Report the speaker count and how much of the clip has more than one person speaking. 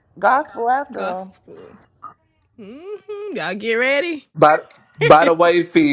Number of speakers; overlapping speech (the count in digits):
3, about 4%